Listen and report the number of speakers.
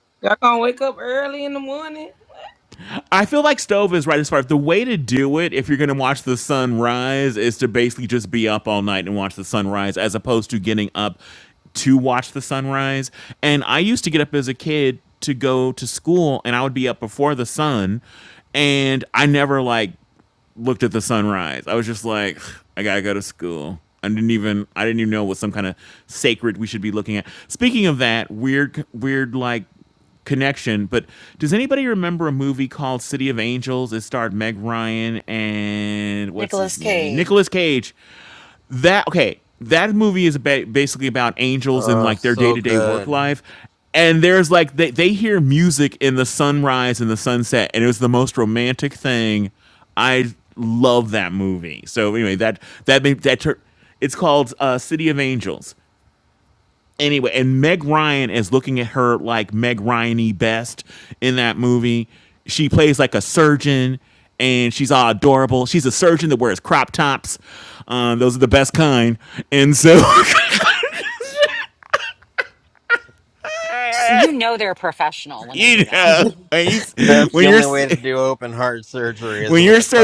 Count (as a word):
four